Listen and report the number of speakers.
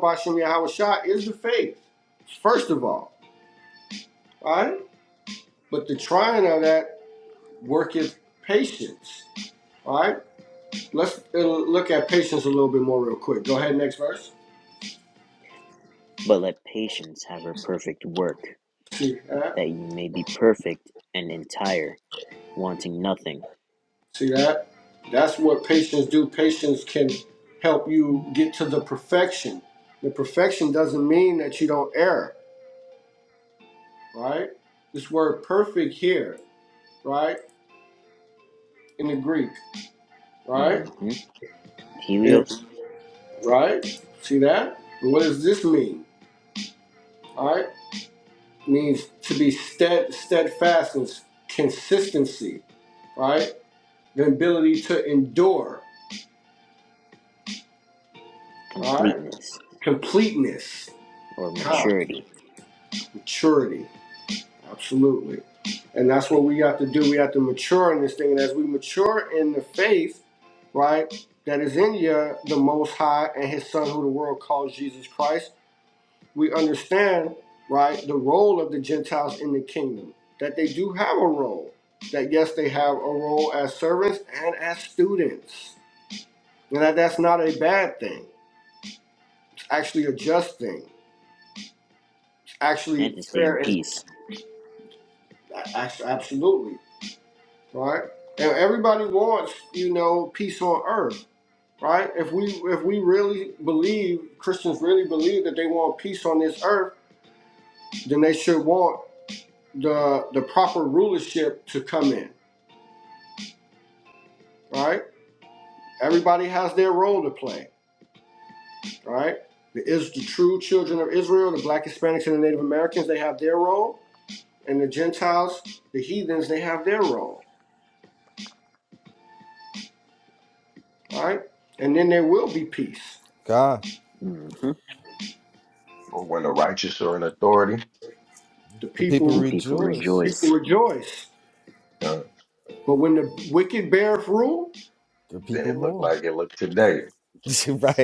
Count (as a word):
four